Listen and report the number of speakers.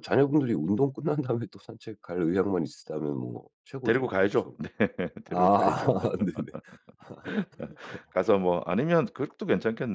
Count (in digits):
2